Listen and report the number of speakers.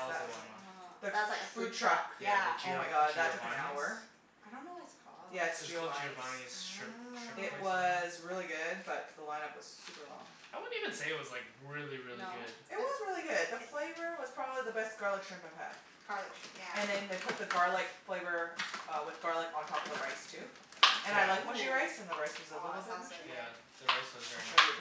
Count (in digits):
3